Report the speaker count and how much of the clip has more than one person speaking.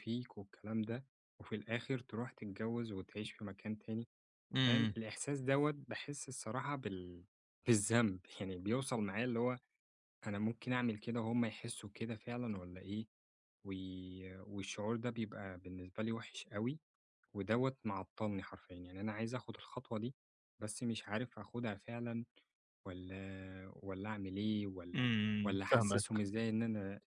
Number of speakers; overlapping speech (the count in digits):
2, about 4%